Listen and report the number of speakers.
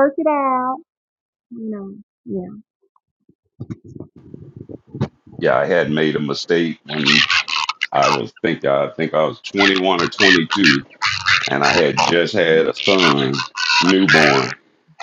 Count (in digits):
2